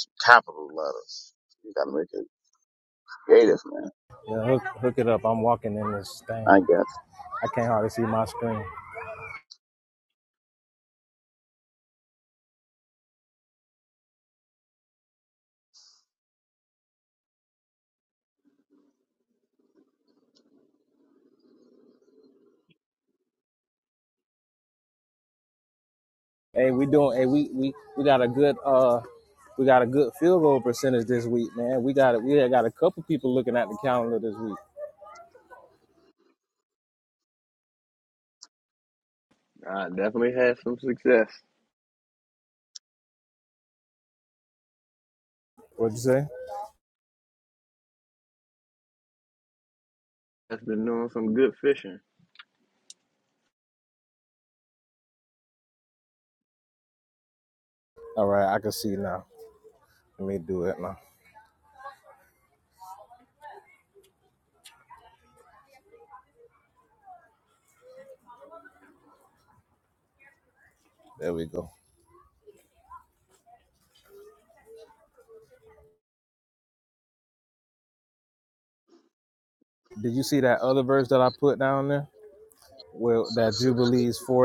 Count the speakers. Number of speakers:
three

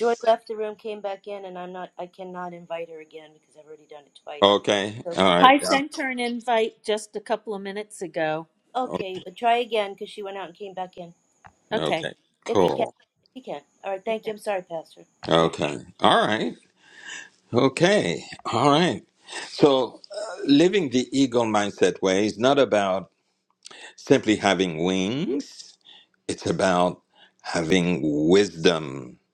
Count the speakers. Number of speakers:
three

